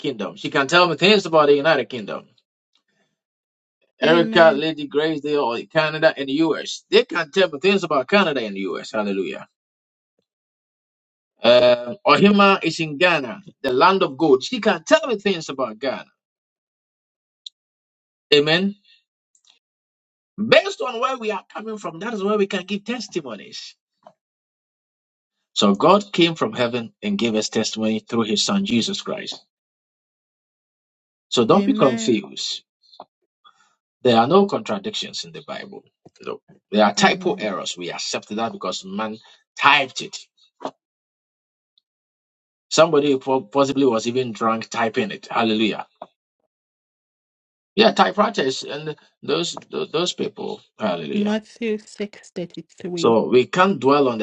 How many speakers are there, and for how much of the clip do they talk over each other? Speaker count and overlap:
2, about 4%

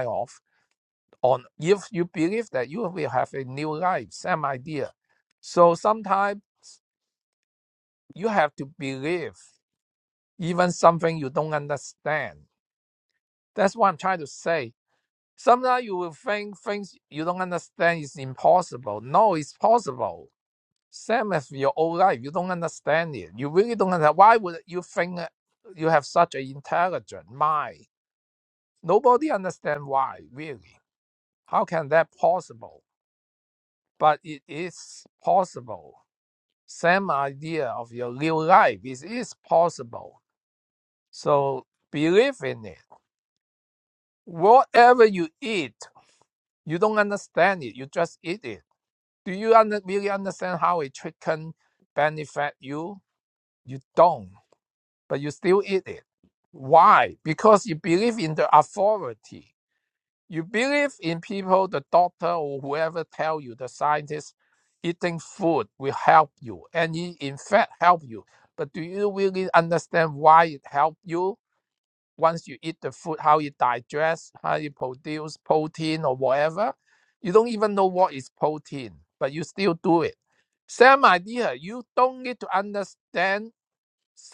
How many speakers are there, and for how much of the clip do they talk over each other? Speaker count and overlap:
1, no overlap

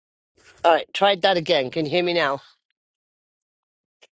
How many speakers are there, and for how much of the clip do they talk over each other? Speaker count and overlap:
1, no overlap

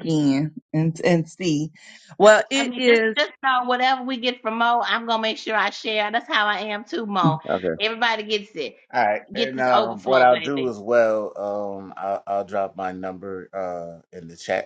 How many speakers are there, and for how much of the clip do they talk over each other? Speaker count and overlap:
3, about 14%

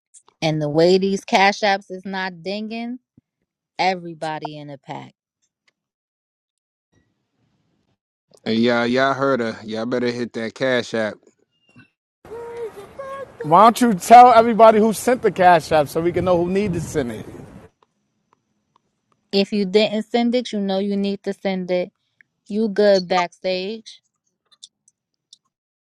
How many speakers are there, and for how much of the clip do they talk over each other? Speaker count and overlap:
3, no overlap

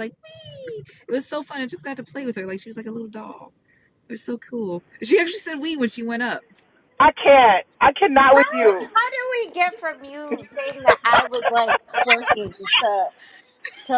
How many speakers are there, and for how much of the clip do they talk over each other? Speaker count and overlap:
3, about 4%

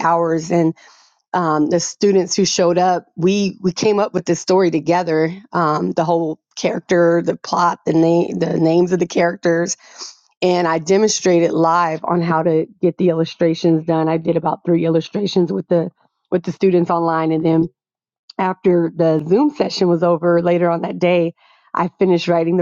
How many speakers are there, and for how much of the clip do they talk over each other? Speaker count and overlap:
1, no overlap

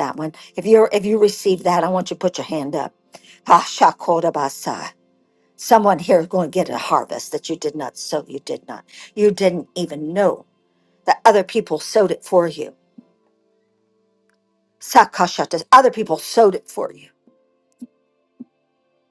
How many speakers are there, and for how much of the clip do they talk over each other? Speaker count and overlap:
1, no overlap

